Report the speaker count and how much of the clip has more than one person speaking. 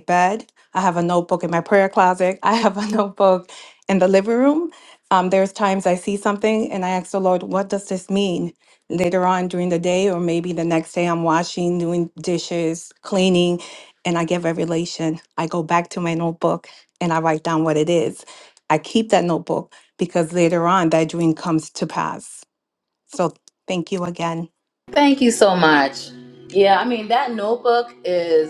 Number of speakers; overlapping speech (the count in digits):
2, no overlap